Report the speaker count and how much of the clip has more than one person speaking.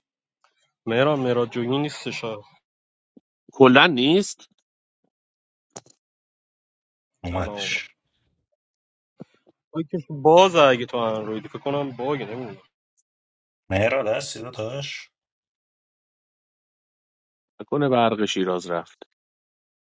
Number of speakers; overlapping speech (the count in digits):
3, about 2%